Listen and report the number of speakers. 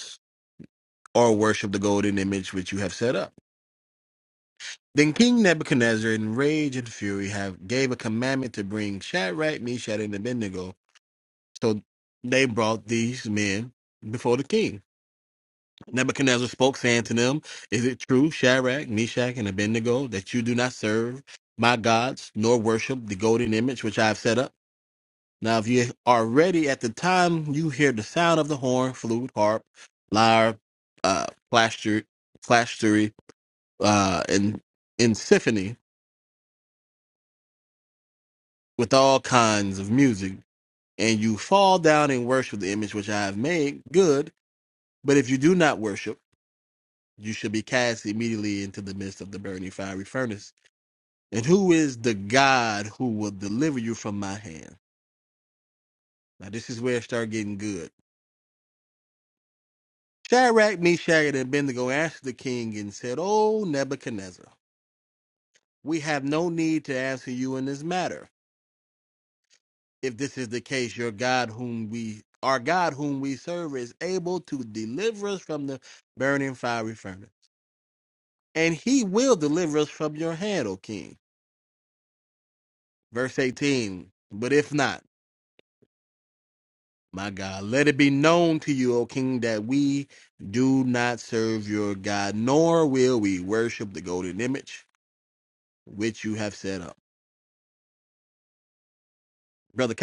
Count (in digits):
1